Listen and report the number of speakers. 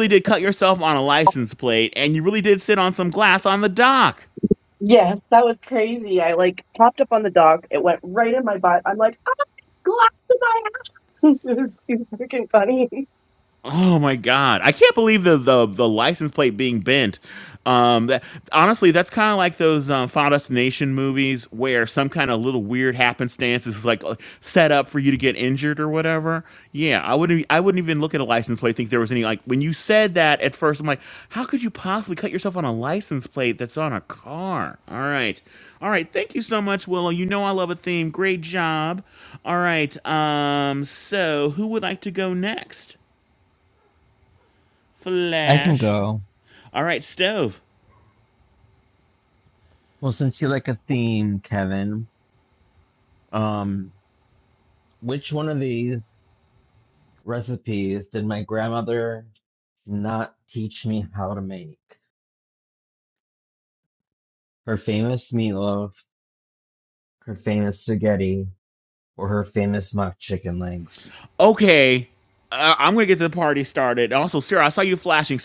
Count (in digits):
3